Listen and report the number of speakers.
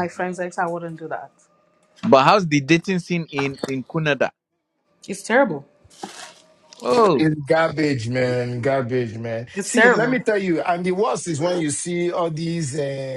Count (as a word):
three